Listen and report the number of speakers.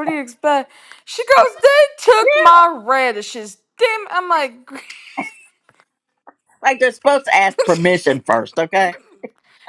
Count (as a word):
two